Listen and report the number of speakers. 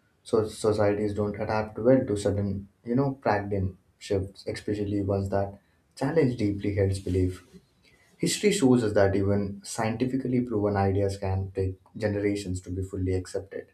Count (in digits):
1